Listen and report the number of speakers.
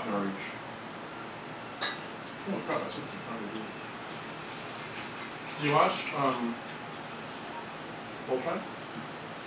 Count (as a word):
two